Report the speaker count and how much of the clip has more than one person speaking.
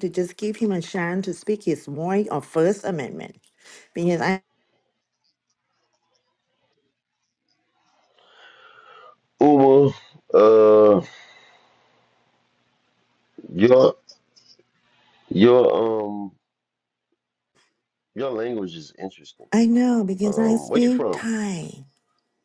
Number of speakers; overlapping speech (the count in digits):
2, about 4%